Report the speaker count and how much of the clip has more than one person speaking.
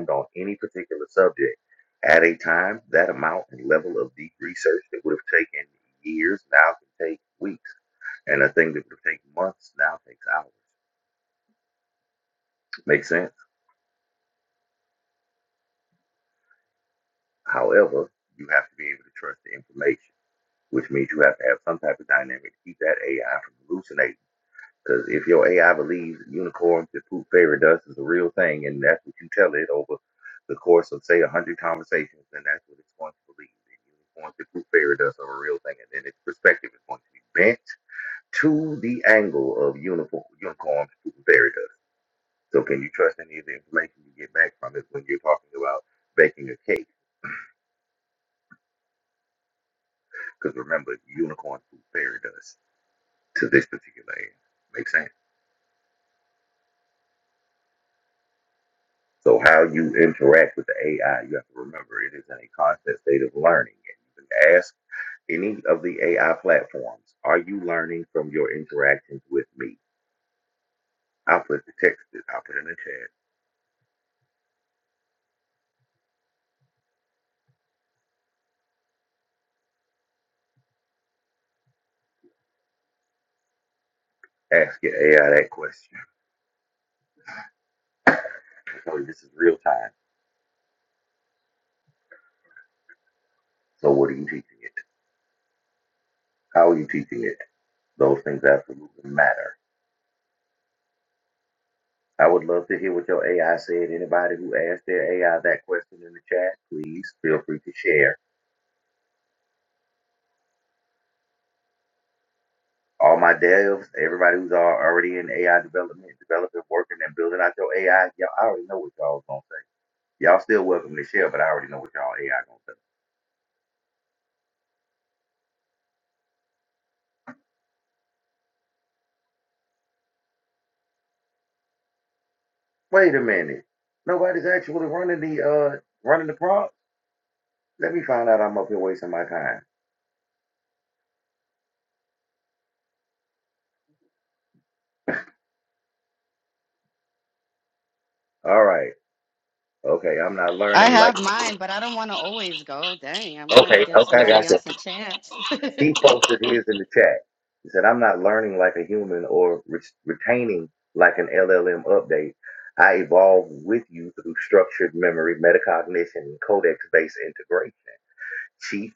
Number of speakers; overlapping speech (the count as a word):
two, about 1%